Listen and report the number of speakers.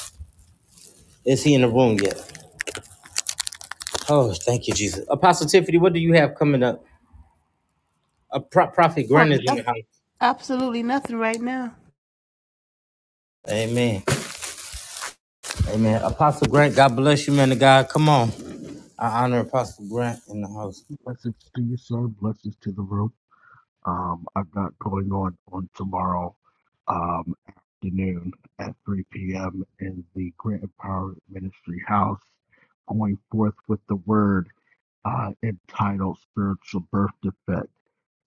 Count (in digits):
3